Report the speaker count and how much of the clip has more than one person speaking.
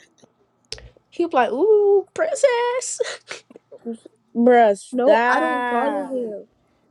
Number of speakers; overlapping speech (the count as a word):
three, about 13%